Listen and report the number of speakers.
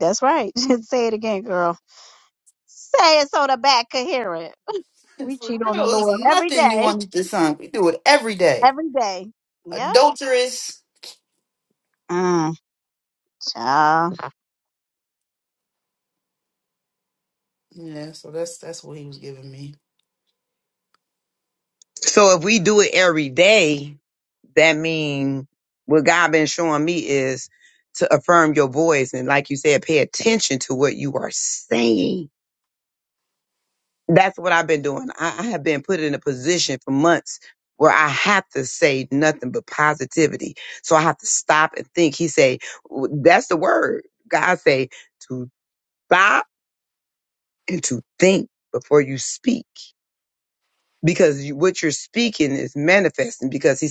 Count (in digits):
3